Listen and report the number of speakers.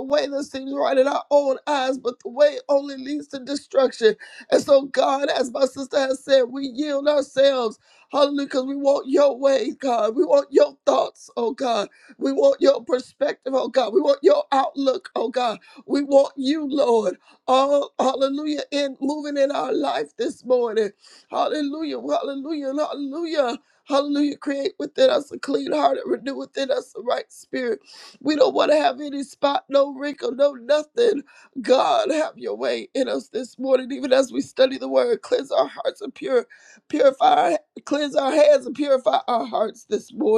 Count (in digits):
1